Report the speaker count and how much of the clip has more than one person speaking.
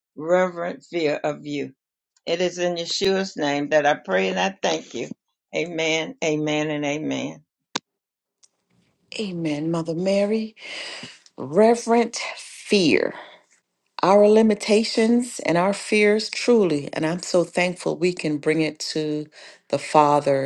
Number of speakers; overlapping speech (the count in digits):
2, no overlap